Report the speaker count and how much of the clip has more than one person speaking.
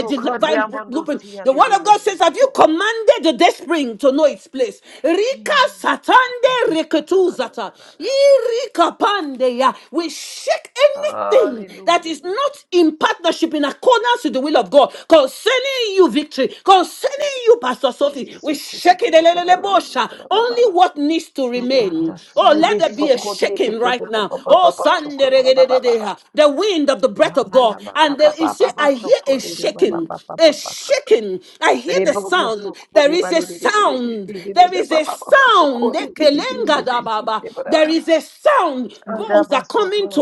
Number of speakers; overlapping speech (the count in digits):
2, about 45%